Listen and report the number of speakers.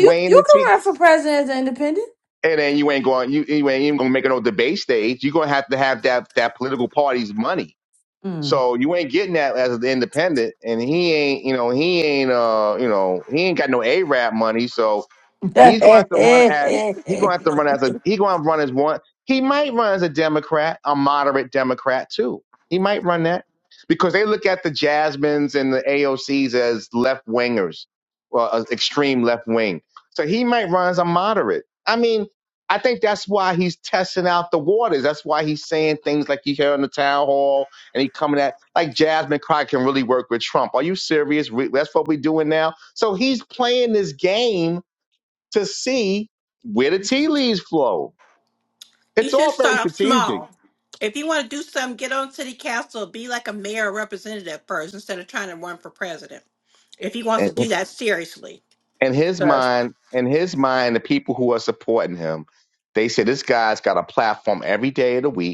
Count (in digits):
3